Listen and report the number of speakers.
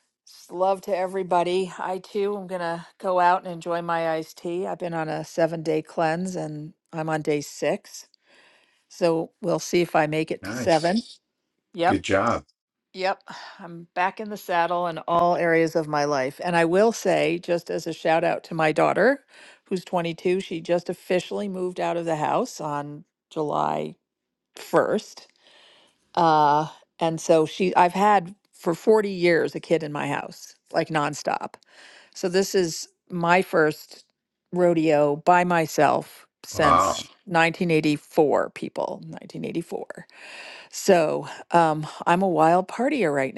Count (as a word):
two